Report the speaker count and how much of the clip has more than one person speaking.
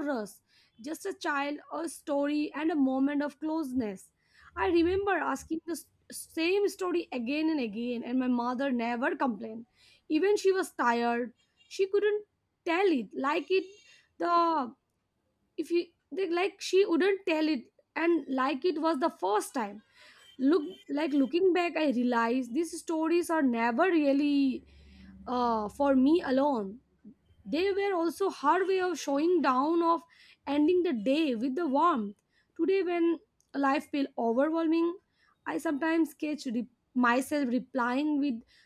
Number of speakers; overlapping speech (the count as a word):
one, no overlap